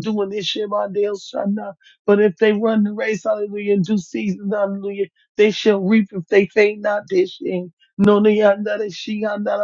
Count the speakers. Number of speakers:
1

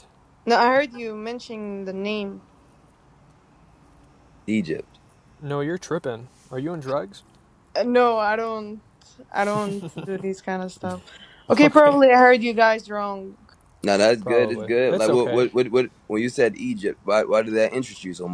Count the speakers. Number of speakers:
3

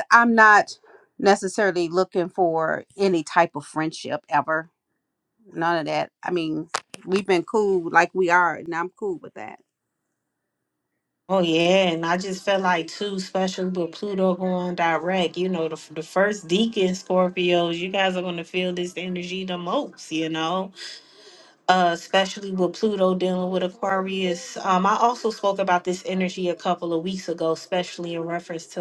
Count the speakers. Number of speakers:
2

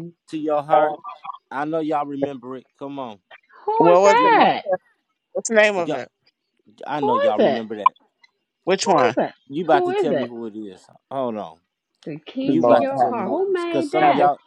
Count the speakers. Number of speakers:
3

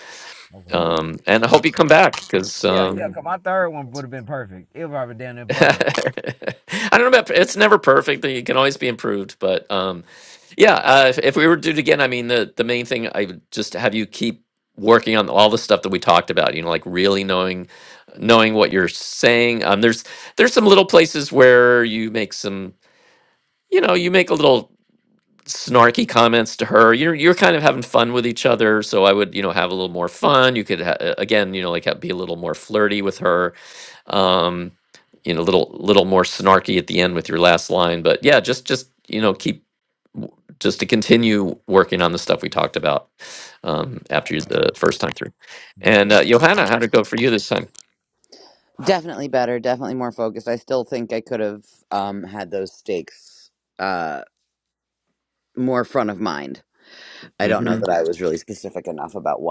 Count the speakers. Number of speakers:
3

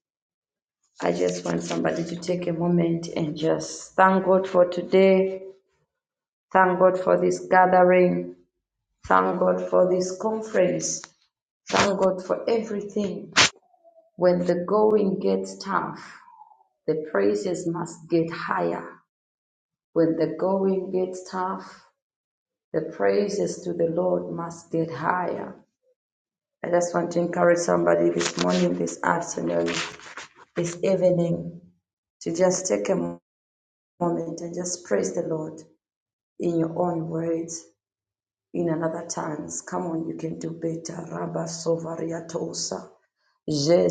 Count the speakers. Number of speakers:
1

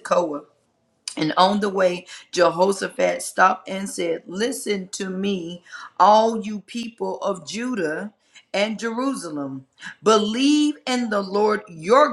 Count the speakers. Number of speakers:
1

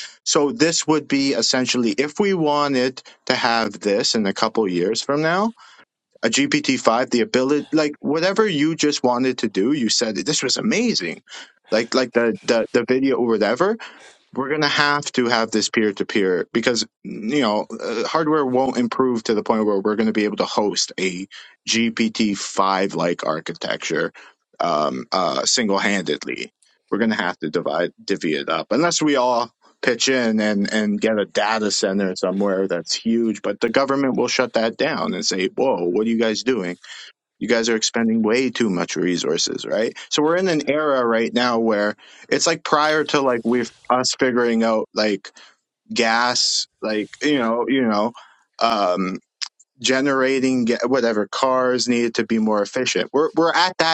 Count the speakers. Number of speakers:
1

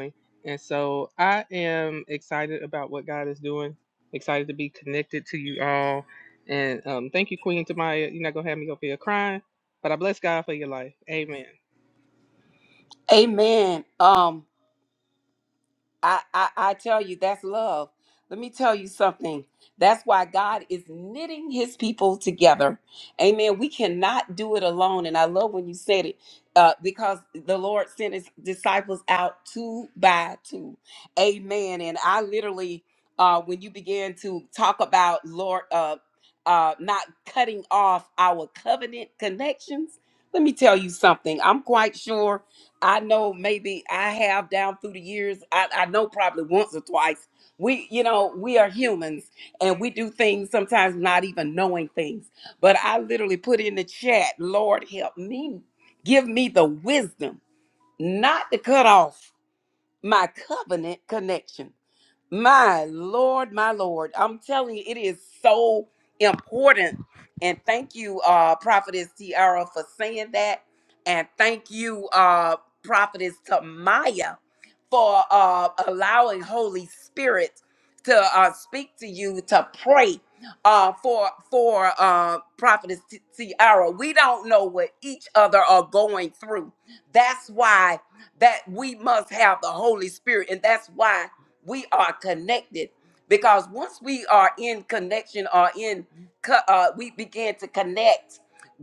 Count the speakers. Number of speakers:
2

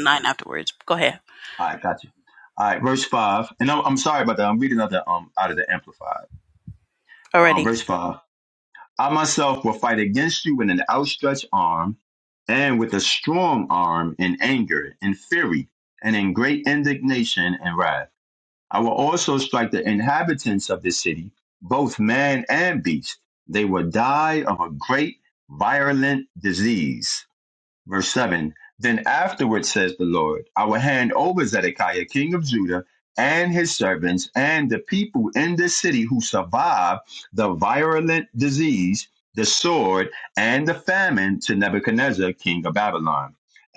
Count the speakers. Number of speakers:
2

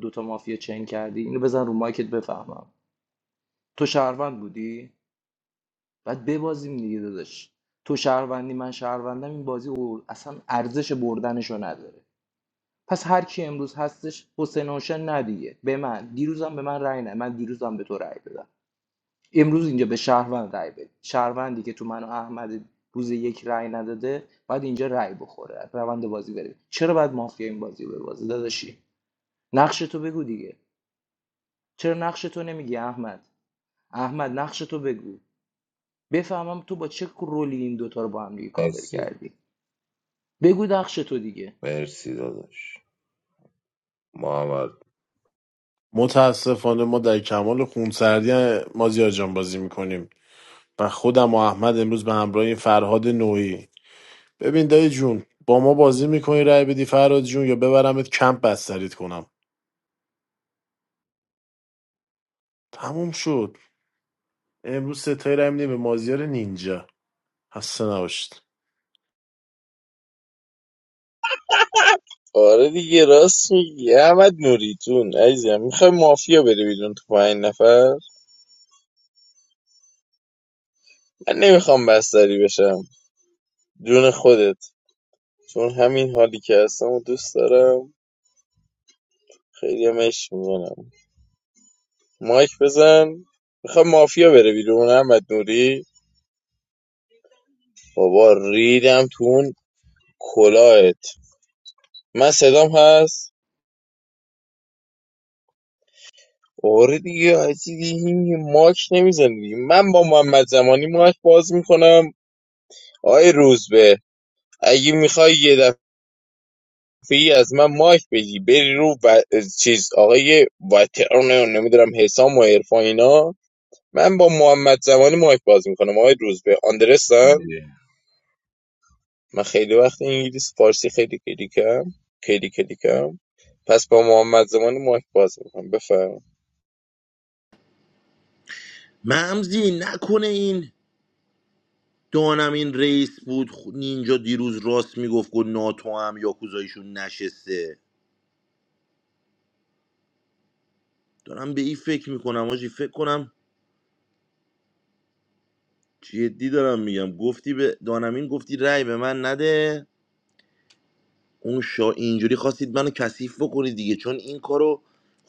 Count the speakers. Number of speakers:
5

